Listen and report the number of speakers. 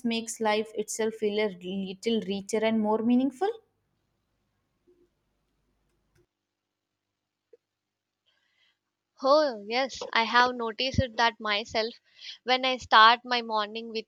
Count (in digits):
2